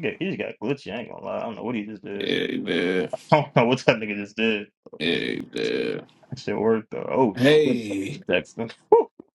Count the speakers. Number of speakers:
two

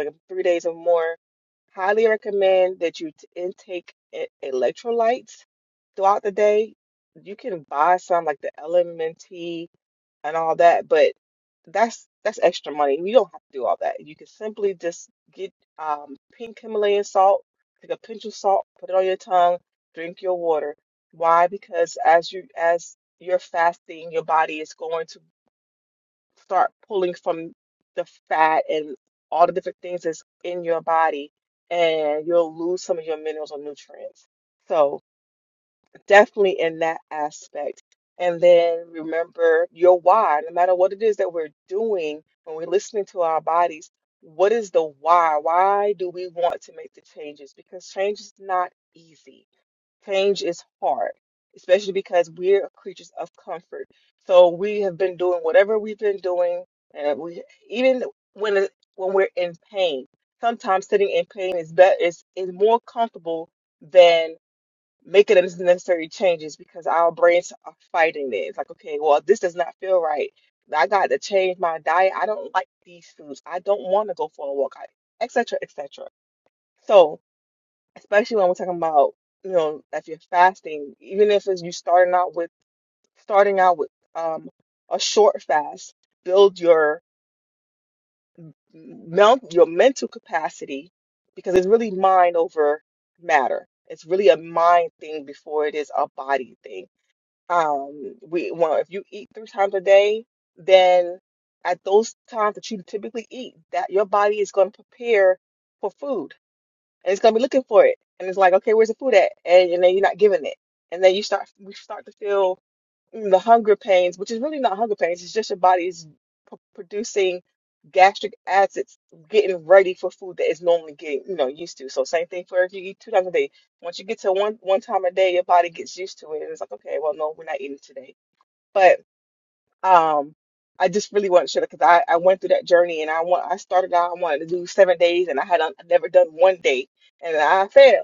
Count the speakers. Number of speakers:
one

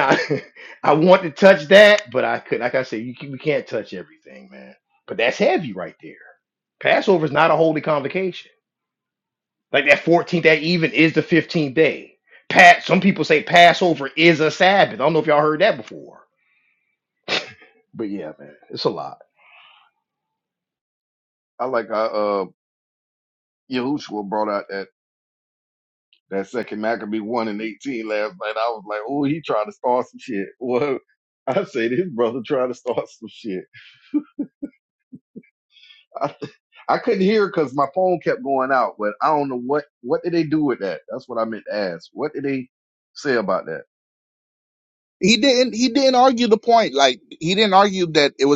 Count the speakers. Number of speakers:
three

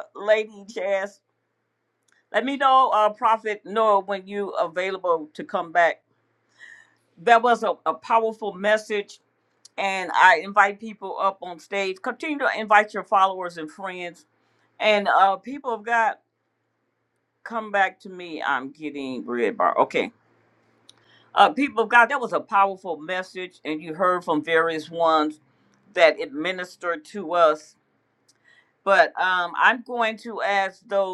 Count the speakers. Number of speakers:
one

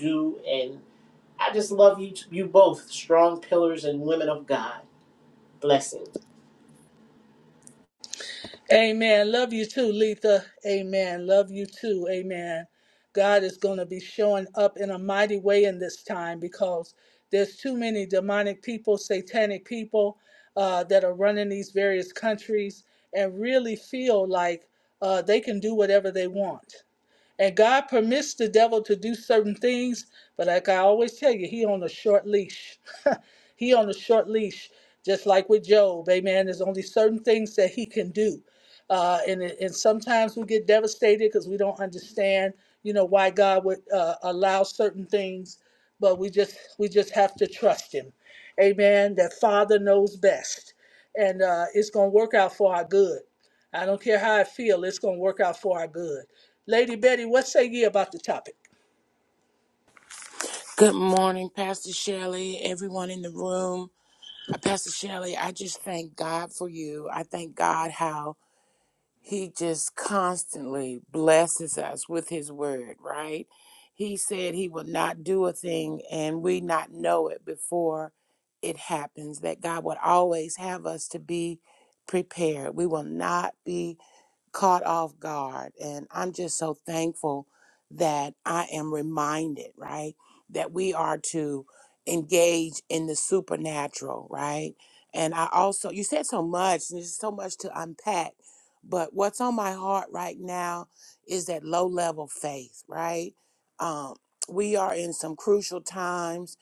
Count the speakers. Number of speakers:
three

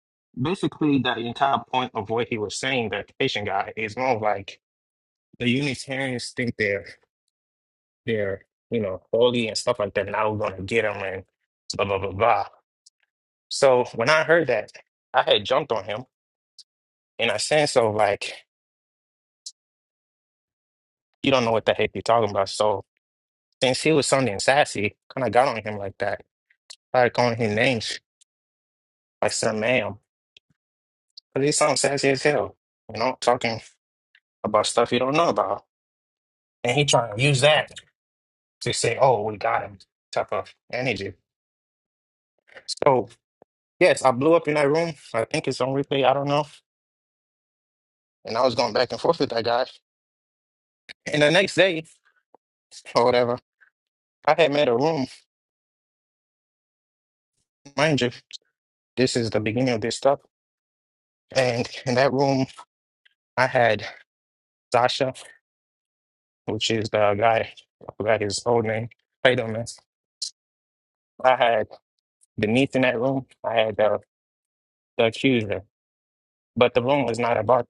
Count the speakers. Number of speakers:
one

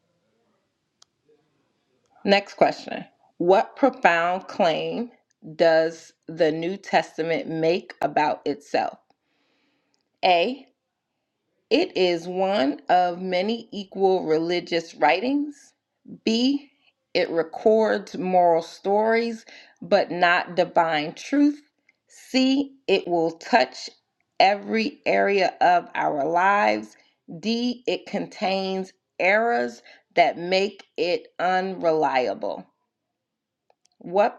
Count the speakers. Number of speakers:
one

